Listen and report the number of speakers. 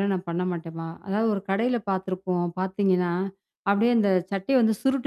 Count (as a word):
one